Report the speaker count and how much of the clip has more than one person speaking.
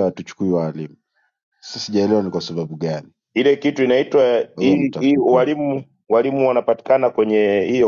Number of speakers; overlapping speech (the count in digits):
2, about 11%